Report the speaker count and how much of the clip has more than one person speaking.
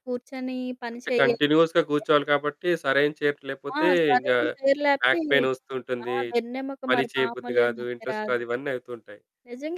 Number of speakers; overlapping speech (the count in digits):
2, about 34%